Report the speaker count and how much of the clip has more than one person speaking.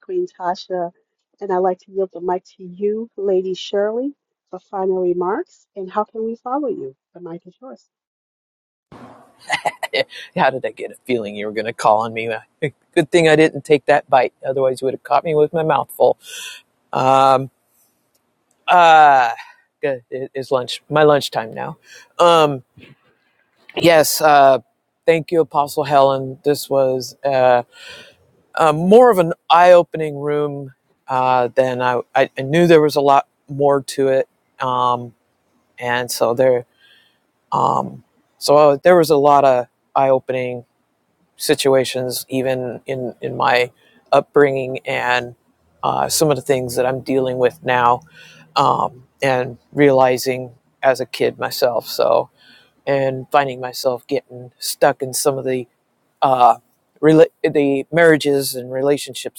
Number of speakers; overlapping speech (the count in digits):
2, no overlap